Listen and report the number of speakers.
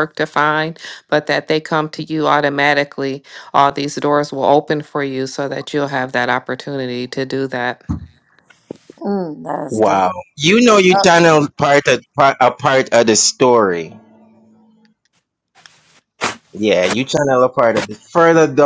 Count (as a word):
three